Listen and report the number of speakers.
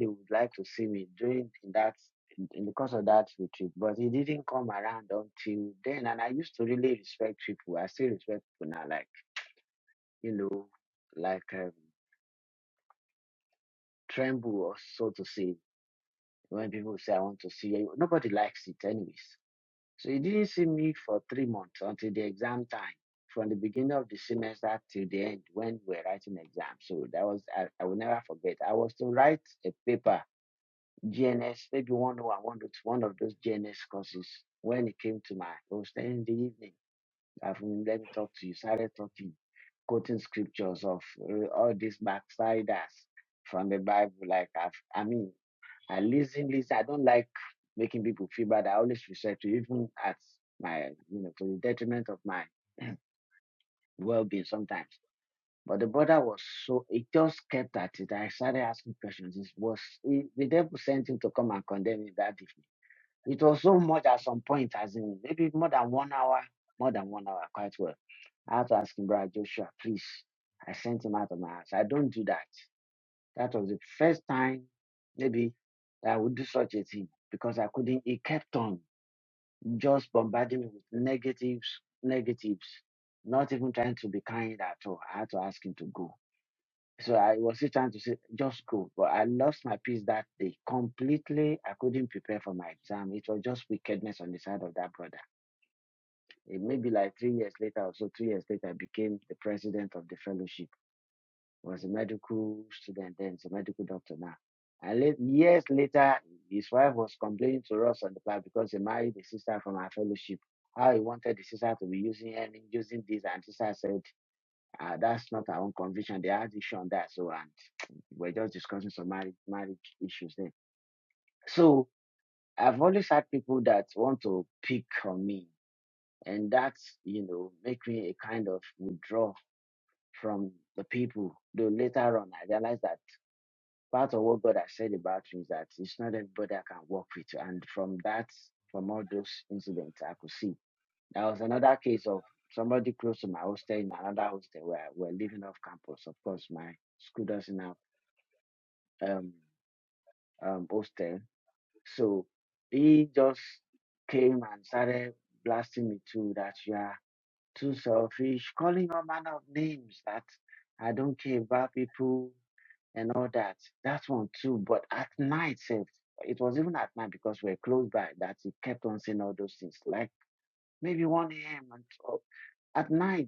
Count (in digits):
1